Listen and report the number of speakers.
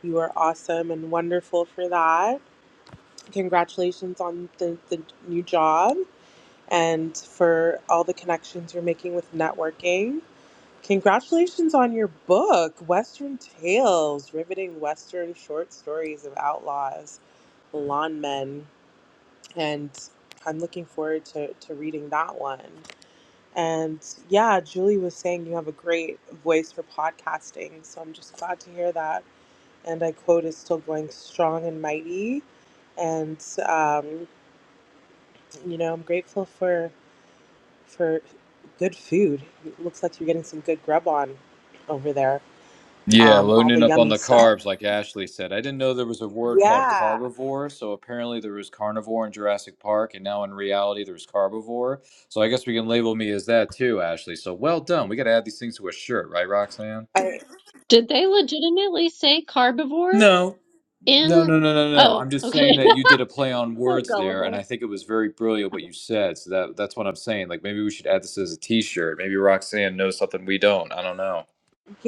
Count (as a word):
three